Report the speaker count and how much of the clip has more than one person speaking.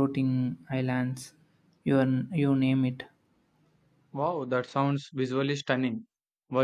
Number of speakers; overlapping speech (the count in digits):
2, no overlap